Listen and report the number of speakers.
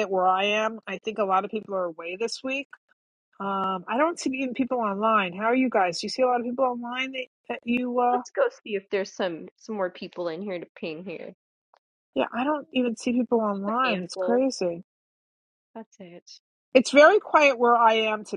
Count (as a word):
two